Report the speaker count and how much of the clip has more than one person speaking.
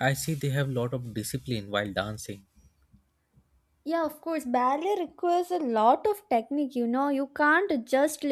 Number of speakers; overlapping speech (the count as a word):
two, no overlap